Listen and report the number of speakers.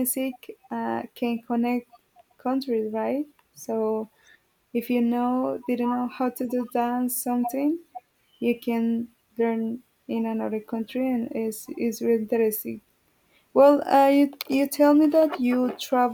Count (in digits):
1